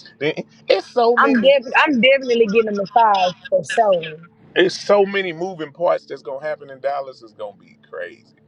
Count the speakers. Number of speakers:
two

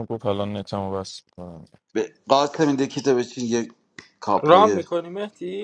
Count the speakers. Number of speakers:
three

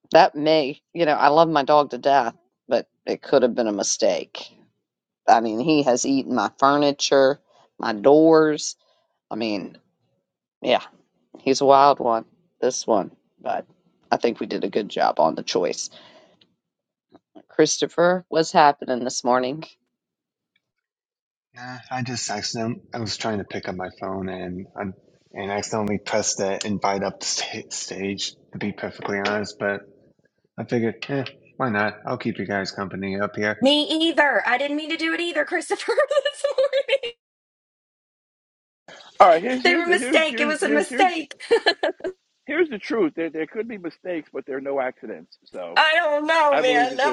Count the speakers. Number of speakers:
four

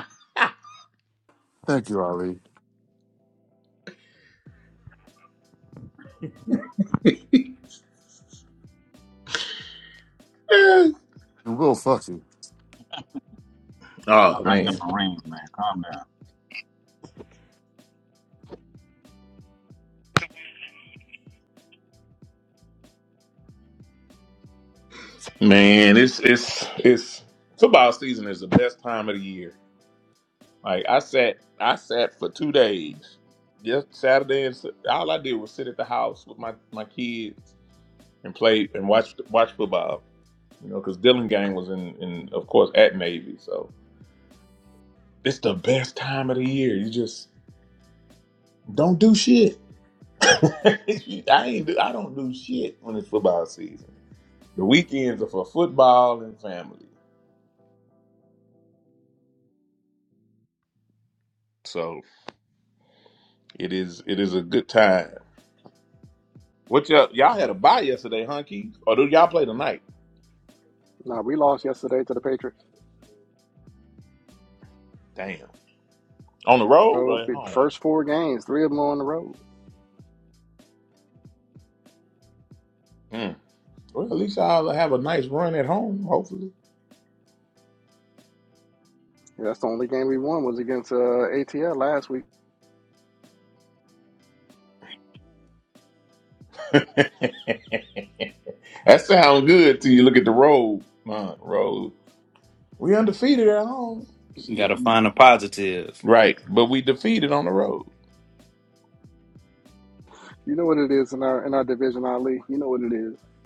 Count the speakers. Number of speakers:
five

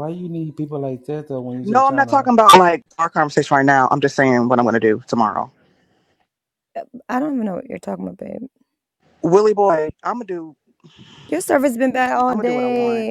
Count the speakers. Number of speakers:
three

